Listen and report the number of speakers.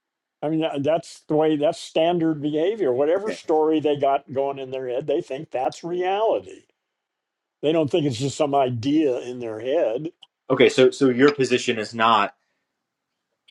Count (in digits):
2